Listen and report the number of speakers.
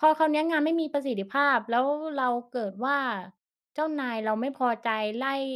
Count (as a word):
one